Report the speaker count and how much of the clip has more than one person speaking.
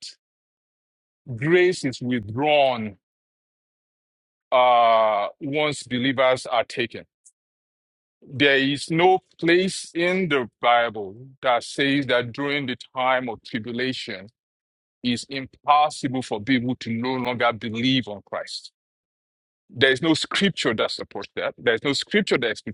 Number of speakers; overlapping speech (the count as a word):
one, no overlap